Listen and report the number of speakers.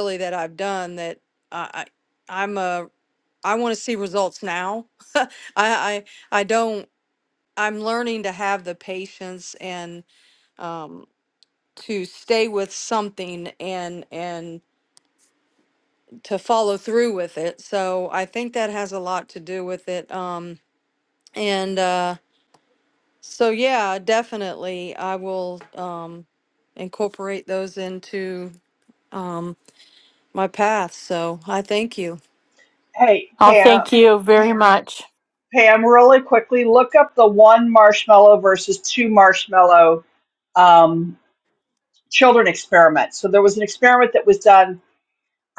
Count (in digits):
3